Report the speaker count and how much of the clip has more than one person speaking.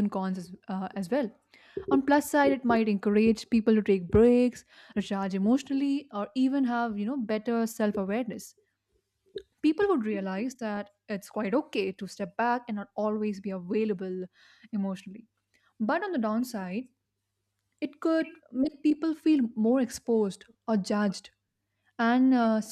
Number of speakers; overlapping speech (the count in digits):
1, no overlap